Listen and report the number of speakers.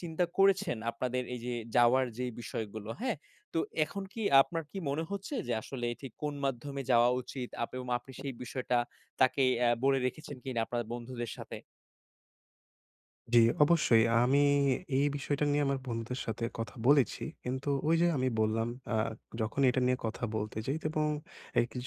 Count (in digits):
2